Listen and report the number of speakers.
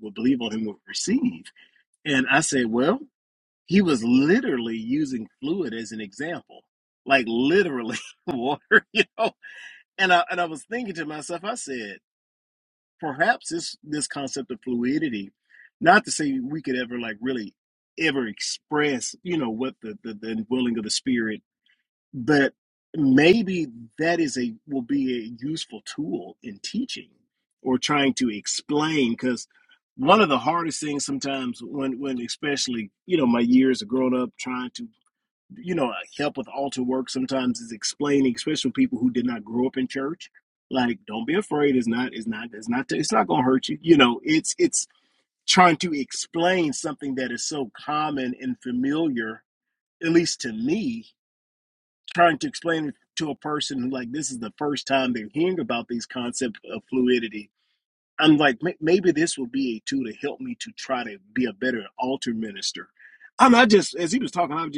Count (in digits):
1